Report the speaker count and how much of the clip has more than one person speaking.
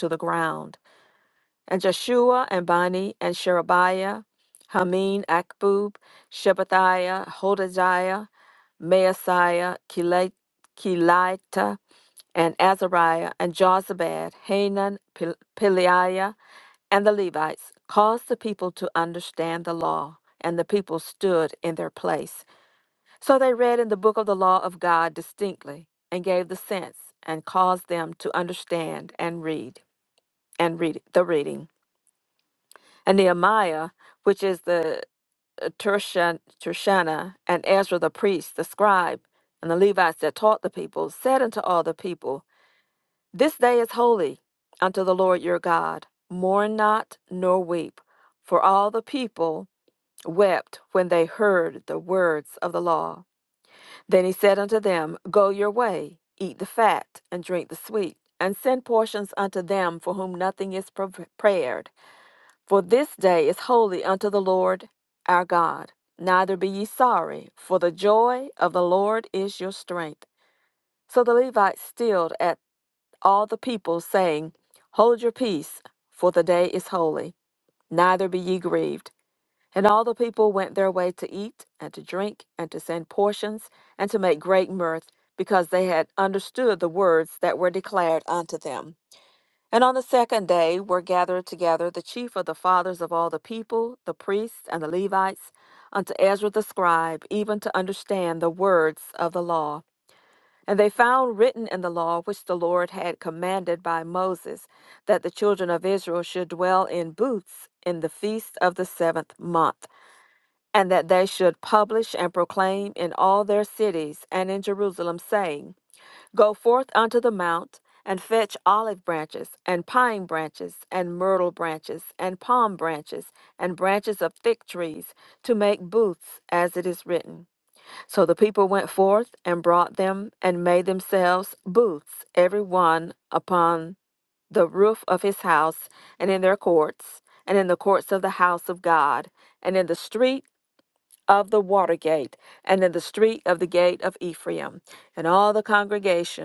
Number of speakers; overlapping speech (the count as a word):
one, no overlap